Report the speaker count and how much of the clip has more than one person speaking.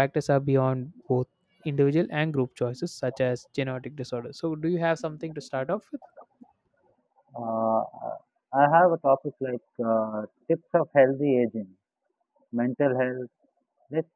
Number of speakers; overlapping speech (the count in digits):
2, no overlap